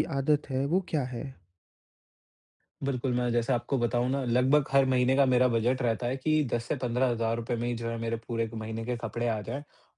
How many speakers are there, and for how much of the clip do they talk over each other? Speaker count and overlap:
2, no overlap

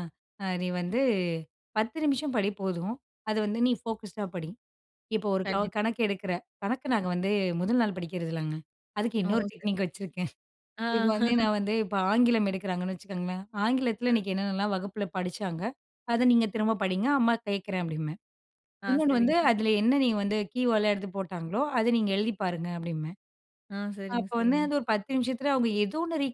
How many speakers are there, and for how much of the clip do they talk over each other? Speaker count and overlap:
2, about 8%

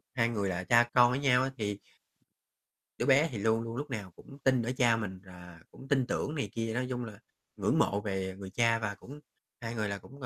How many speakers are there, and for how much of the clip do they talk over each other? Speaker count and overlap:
1, no overlap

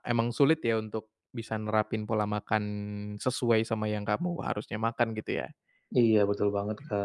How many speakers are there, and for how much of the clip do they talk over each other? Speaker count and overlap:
2, no overlap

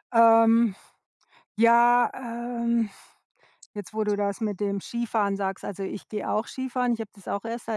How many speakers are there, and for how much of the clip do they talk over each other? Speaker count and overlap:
1, no overlap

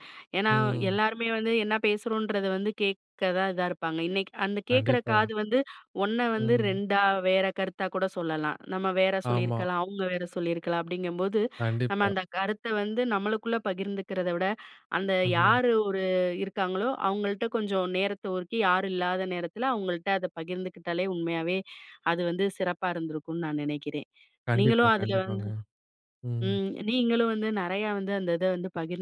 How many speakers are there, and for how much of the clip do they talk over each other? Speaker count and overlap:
2, about 11%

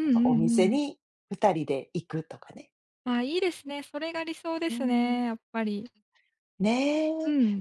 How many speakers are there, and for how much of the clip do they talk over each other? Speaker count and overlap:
2, about 12%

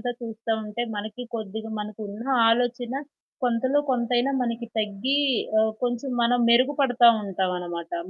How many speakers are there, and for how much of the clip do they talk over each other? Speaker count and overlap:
1, no overlap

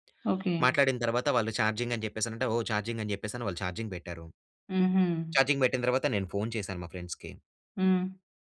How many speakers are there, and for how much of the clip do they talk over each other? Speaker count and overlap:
2, no overlap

